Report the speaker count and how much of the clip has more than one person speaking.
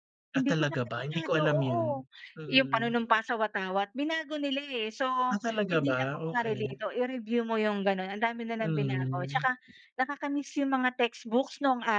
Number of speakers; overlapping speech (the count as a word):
two, about 32%